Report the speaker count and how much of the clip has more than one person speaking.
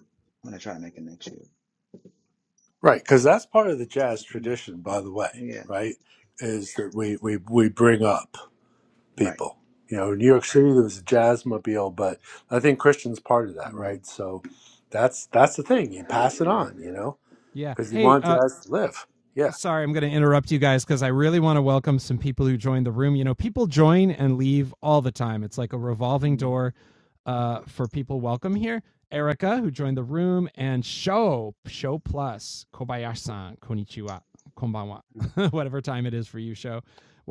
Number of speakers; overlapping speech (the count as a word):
three, about 5%